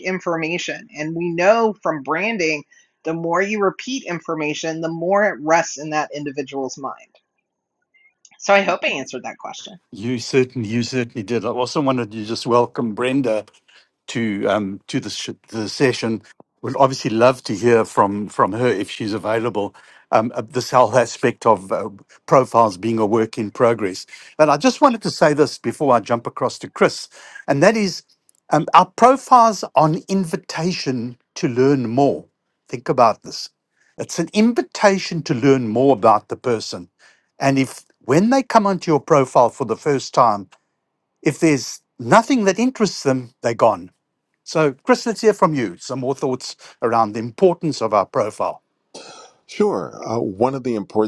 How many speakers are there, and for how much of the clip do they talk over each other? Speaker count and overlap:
three, no overlap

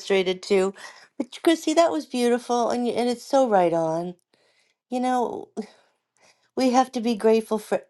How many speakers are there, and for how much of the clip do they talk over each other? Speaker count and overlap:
one, no overlap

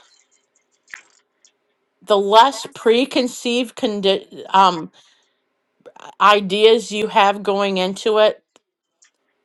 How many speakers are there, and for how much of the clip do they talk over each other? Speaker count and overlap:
one, no overlap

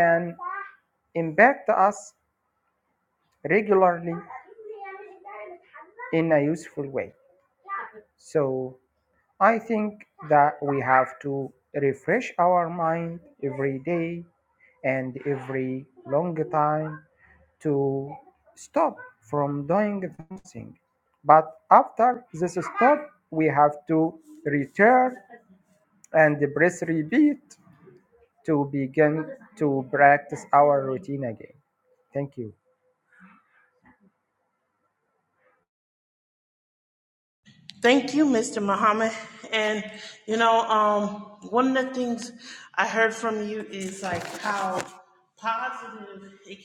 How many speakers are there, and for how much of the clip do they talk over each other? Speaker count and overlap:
two, no overlap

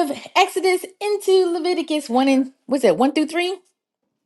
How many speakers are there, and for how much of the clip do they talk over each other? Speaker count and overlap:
one, no overlap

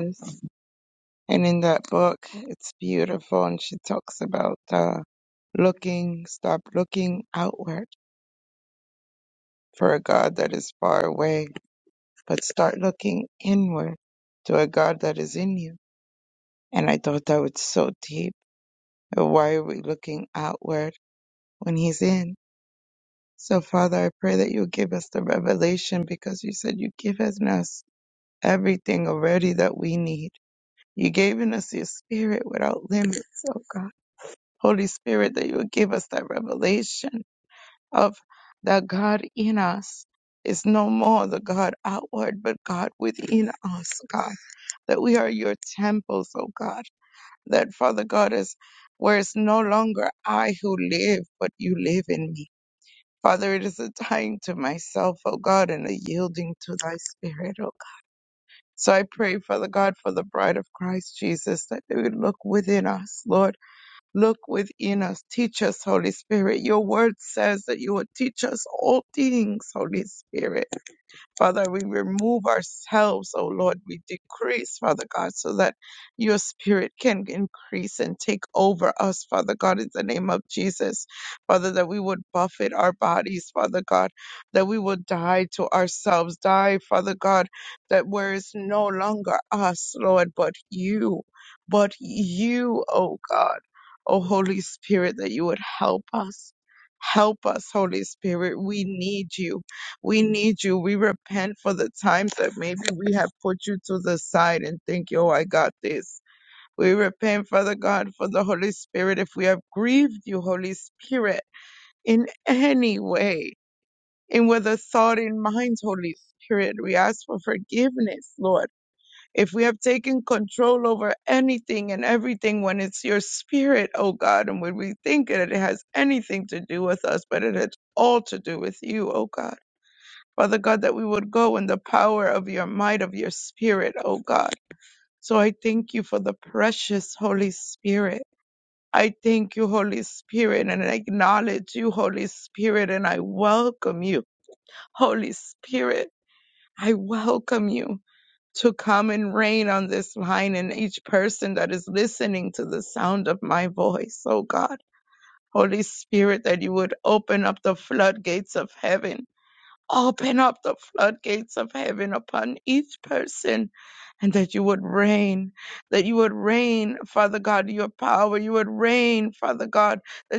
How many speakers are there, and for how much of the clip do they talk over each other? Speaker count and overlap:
one, no overlap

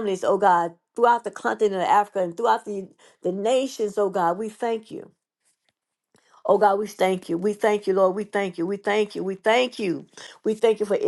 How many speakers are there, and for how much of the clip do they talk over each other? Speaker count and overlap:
one, no overlap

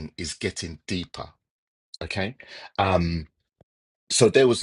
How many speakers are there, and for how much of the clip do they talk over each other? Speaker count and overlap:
one, no overlap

